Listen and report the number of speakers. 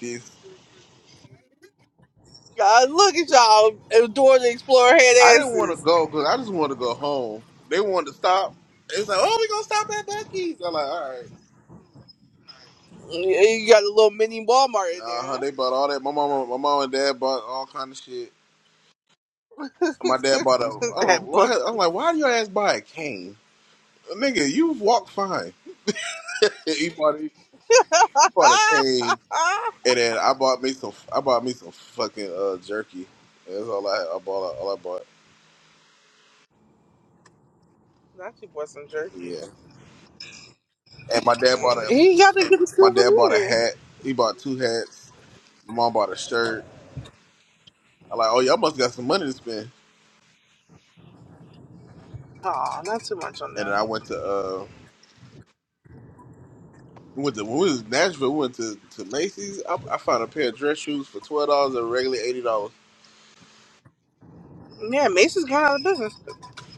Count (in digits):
2